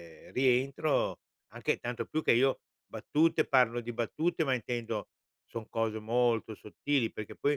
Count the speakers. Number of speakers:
1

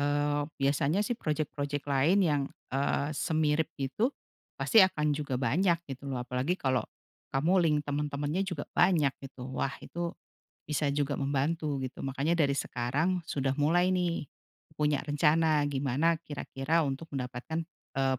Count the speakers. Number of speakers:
1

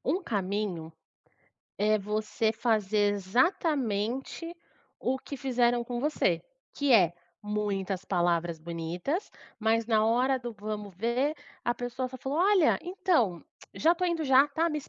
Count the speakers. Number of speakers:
1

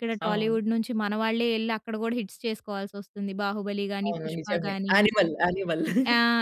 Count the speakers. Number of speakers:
2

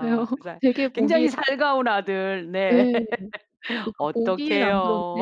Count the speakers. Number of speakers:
2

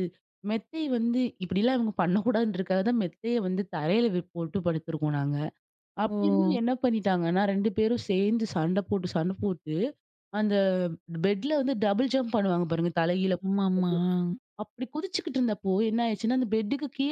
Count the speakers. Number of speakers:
2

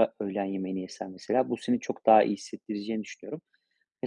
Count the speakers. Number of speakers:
1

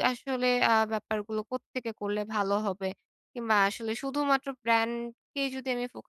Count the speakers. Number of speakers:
1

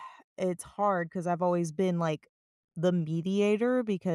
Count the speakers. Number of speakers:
1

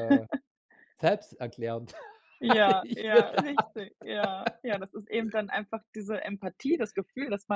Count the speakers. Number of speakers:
2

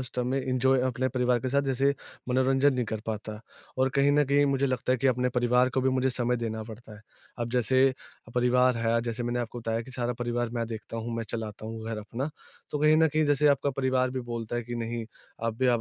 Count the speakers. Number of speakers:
1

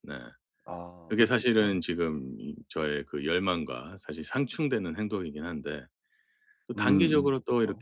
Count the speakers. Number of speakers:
2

